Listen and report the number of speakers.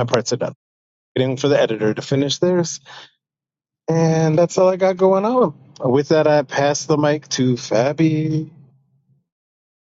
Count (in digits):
1